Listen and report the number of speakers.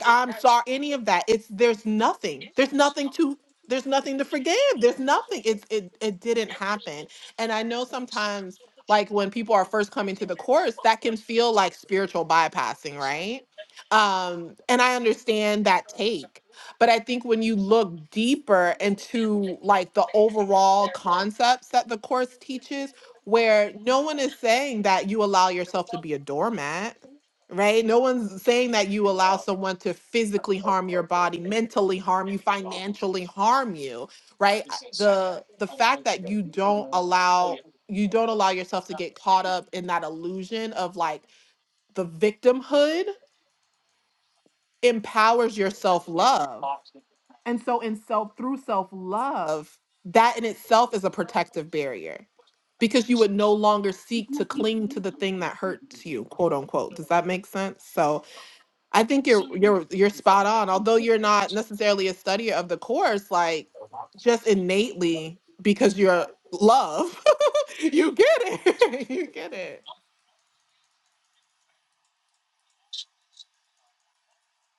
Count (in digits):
1